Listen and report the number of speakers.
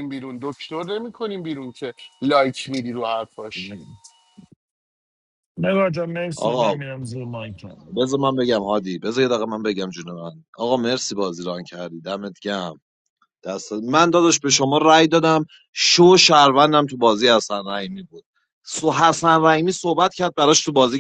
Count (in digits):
3